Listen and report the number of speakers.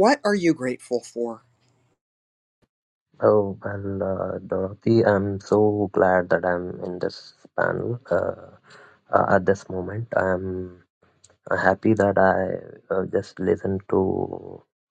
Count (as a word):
two